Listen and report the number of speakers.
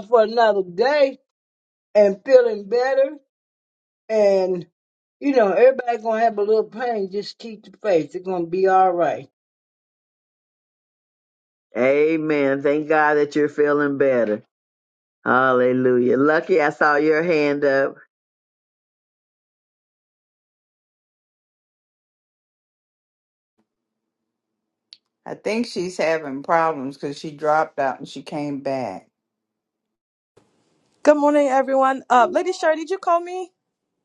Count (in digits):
4